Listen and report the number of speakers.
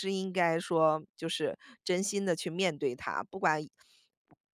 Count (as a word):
one